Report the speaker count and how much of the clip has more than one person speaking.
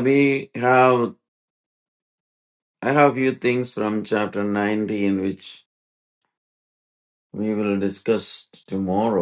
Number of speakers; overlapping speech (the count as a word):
one, no overlap